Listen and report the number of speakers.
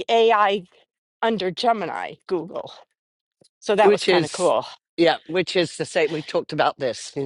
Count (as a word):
two